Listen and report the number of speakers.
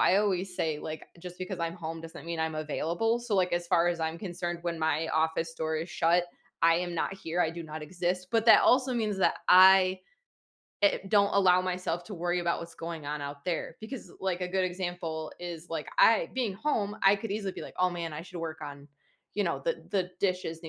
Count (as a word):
one